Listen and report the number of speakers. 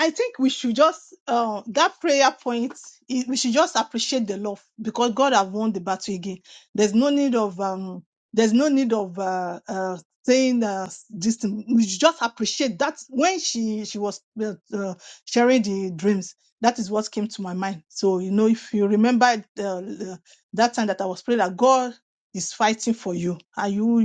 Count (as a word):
one